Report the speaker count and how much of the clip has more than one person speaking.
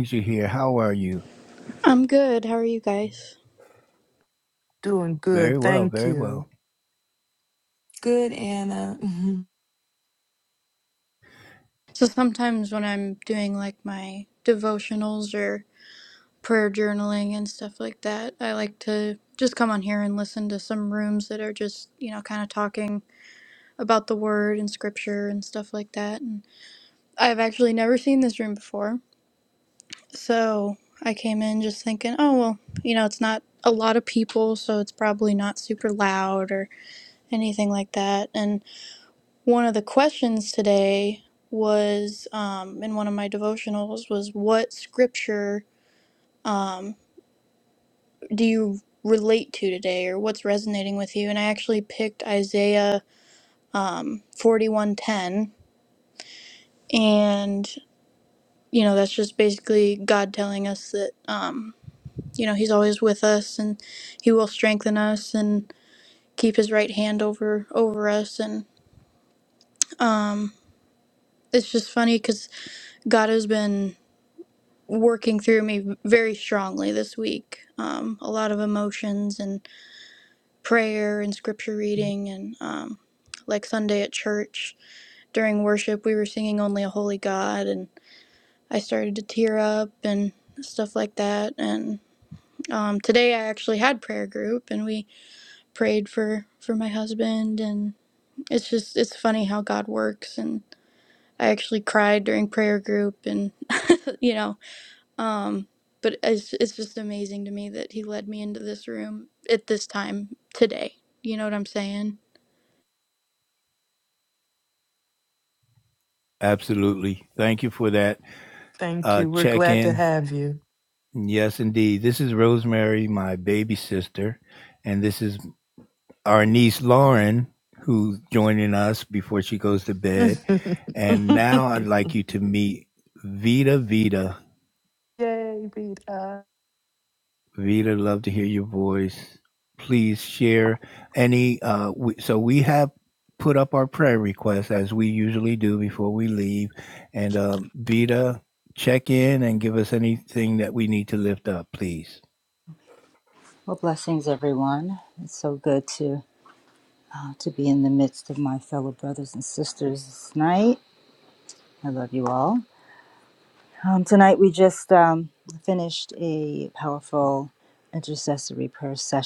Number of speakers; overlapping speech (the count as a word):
five, about 1%